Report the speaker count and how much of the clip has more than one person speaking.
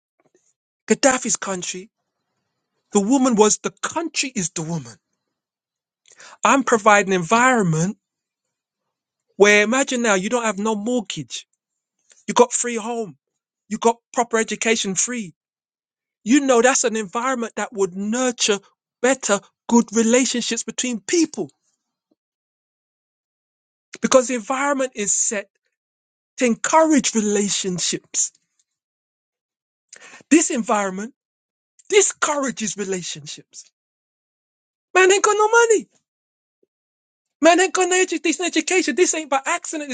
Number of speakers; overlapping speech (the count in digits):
1, no overlap